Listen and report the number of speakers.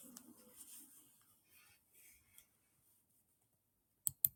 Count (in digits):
0